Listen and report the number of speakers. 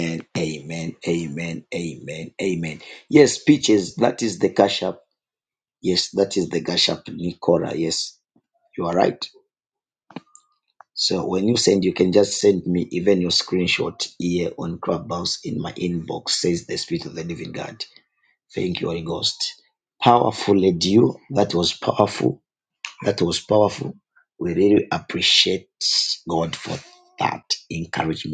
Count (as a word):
one